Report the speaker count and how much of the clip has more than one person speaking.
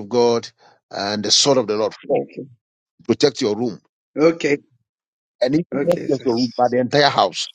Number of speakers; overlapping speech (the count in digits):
2, about 9%